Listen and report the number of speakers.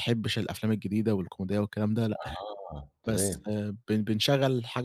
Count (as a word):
two